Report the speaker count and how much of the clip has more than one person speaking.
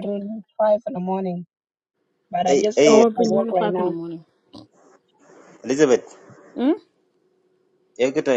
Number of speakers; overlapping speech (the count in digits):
3, about 18%